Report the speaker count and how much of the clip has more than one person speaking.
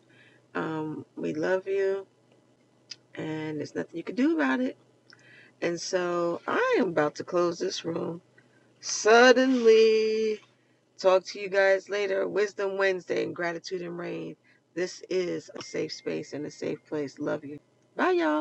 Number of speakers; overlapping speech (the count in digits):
1, no overlap